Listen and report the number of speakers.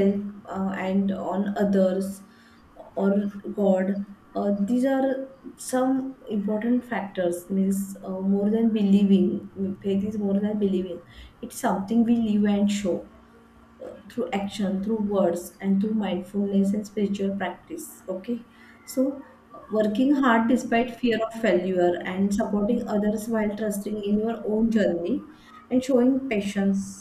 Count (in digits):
1